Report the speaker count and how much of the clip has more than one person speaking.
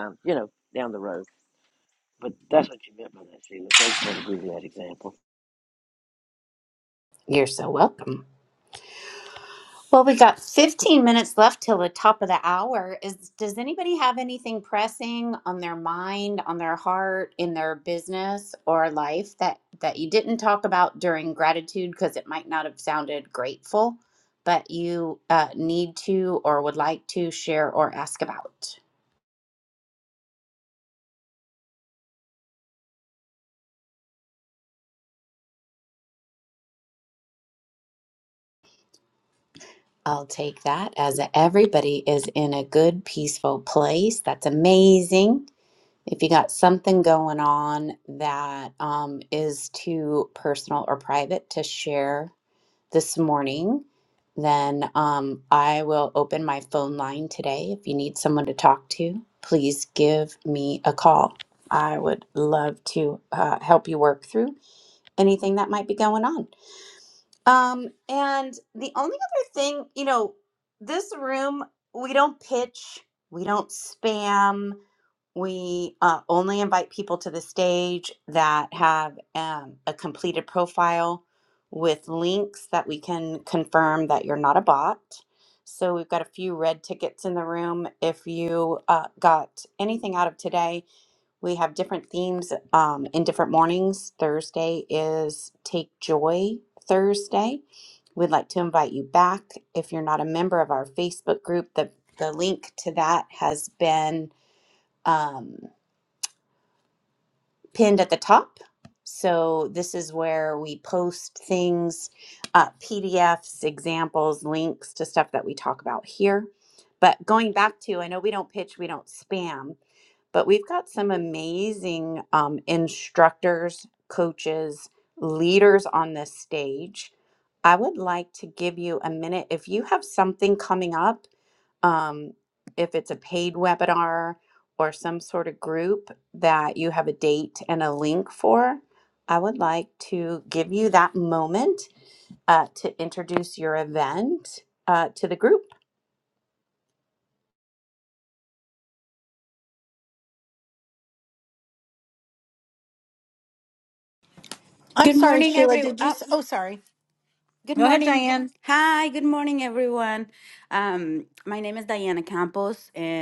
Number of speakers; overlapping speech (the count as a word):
four, about 1%